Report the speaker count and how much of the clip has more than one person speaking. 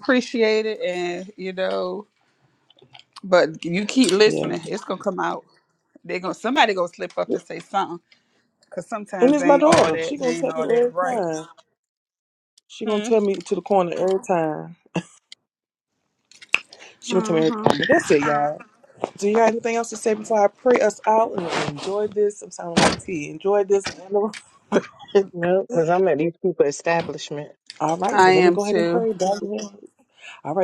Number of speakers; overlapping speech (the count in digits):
3, about 14%